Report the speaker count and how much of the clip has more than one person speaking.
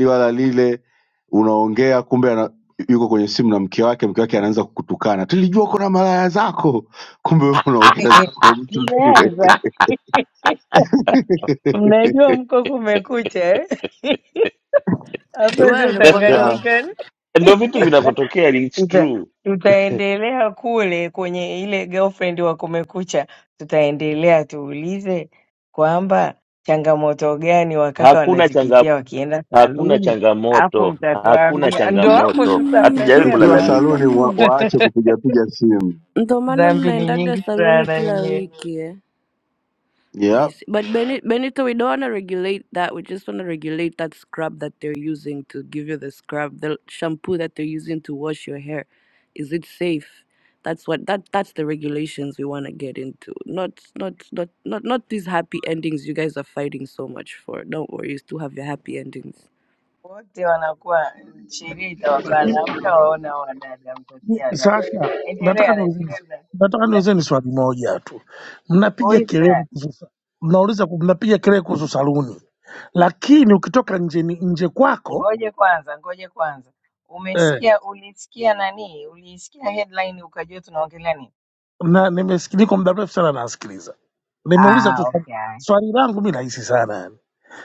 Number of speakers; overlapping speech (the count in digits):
5, about 14%